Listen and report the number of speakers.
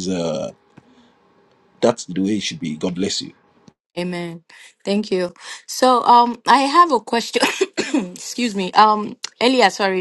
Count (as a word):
two